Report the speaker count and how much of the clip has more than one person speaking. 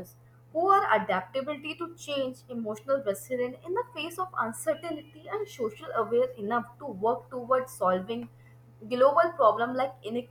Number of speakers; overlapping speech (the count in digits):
1, no overlap